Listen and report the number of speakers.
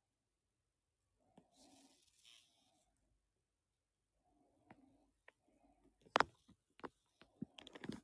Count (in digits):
0